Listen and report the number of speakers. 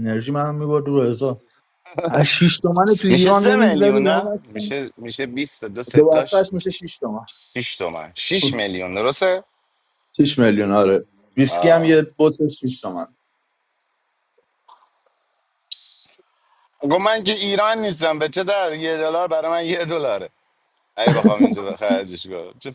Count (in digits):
2